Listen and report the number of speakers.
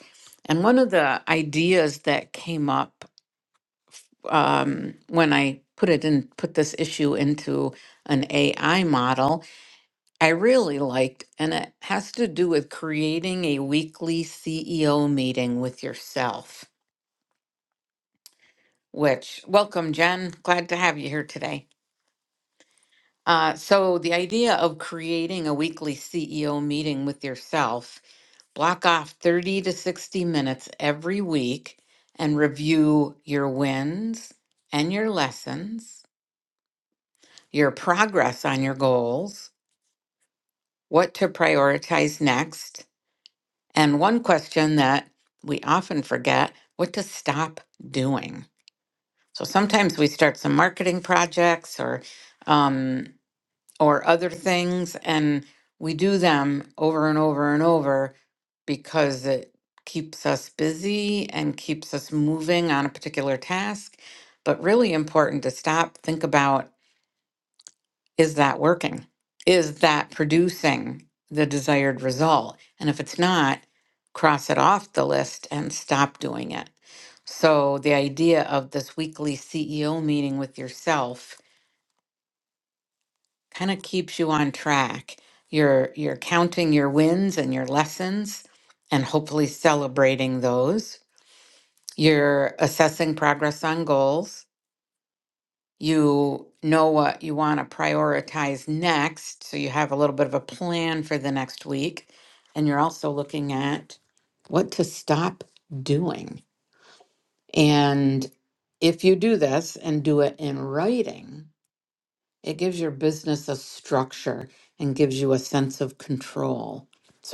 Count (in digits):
1